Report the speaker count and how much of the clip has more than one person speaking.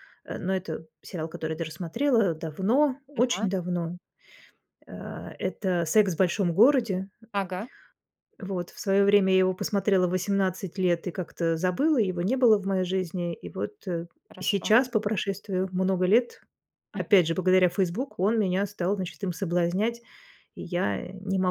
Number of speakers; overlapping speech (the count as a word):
two, about 3%